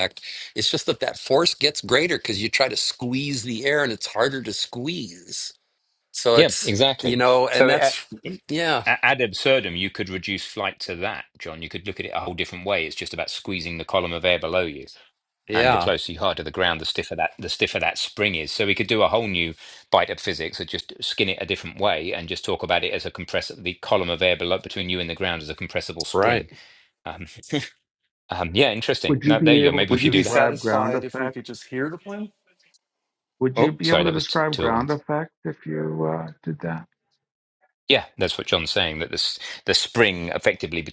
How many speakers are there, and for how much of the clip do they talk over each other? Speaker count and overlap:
four, about 14%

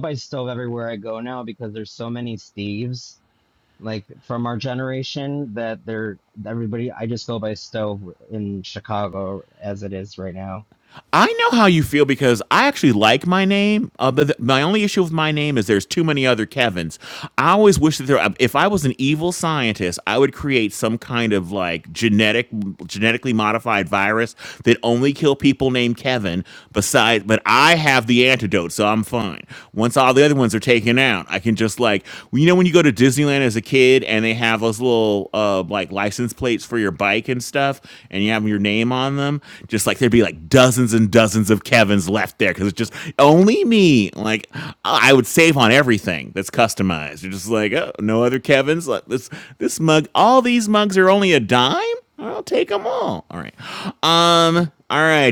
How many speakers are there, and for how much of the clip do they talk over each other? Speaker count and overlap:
two, no overlap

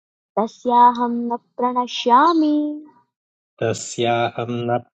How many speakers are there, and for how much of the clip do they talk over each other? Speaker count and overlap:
two, no overlap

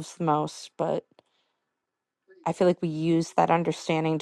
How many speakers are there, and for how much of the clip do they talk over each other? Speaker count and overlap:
one, no overlap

